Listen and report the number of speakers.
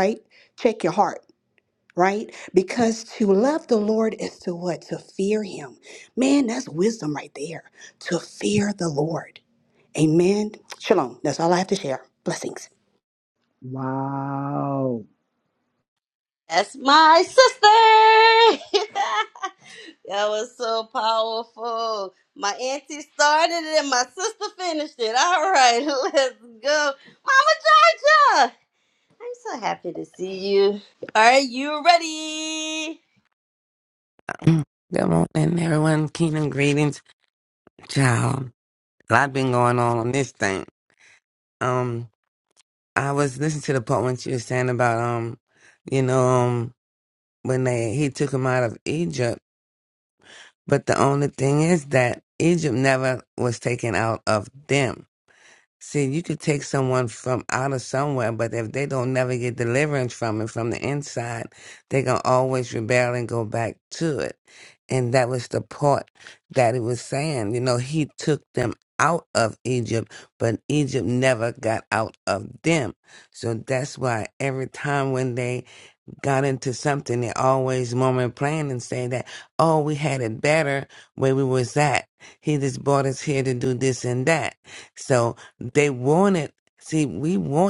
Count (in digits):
4